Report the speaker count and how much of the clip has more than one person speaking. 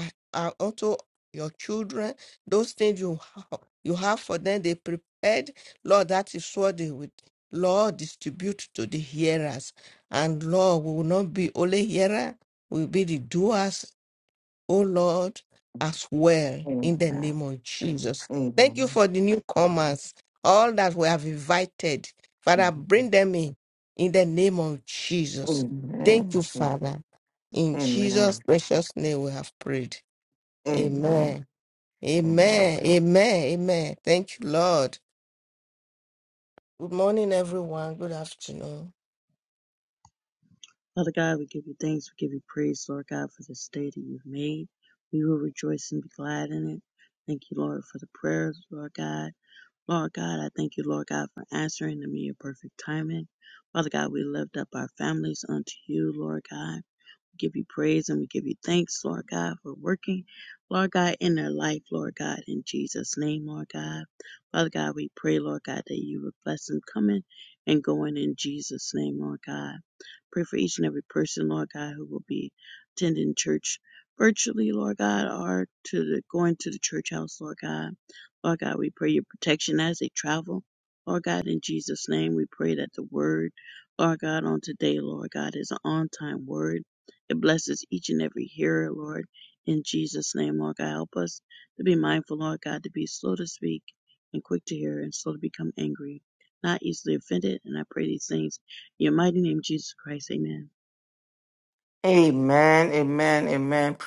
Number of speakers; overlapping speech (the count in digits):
3, about 3%